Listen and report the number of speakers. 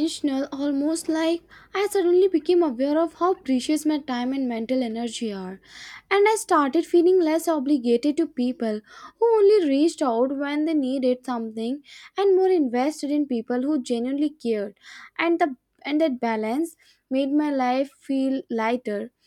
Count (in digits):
1